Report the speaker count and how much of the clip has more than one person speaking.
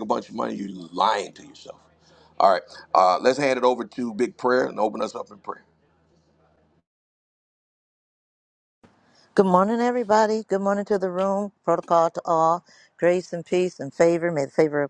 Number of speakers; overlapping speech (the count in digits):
2, no overlap